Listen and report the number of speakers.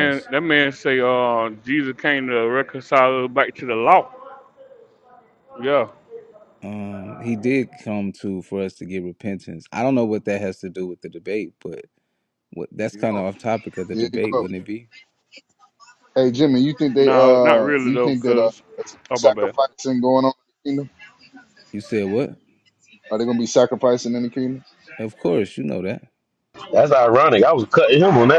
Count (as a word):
four